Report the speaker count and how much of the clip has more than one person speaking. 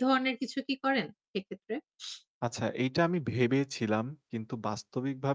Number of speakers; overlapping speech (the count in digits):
2, no overlap